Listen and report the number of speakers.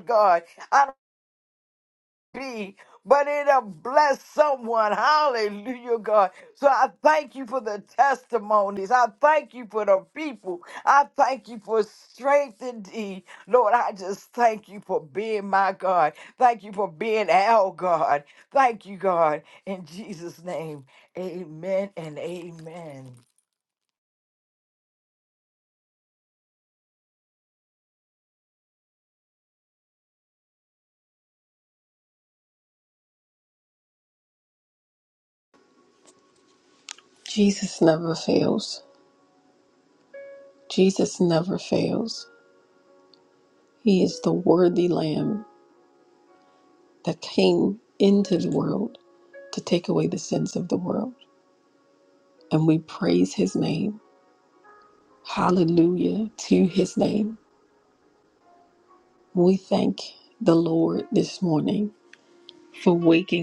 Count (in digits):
2